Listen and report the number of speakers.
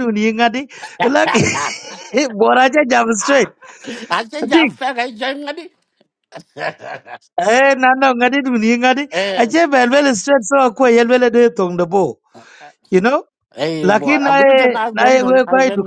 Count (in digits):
2